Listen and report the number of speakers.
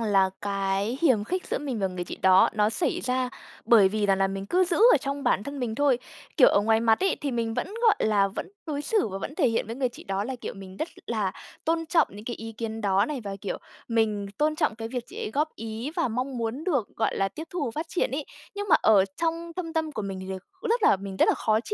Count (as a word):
one